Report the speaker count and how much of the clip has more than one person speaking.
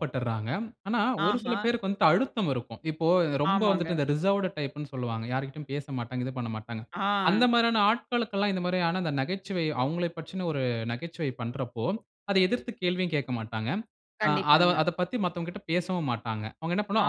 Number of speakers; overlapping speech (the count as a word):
two, about 11%